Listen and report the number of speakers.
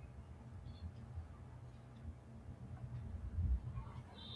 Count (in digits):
0